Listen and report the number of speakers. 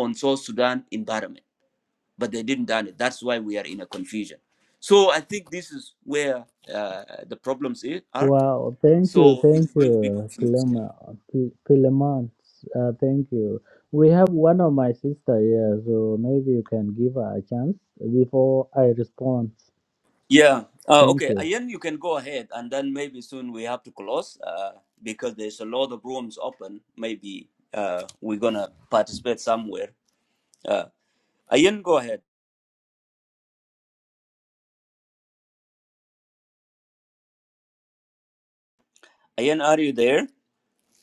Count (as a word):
two